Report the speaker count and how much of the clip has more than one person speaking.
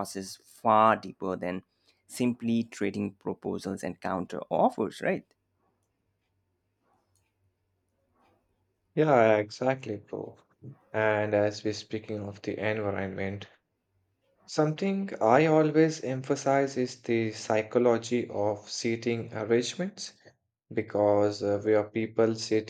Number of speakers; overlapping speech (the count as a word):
two, no overlap